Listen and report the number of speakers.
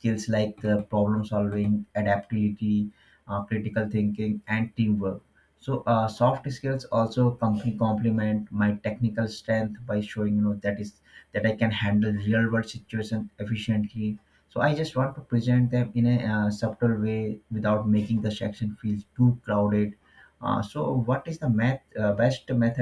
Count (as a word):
one